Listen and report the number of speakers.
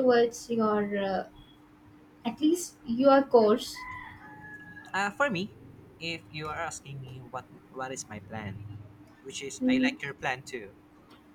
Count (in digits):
2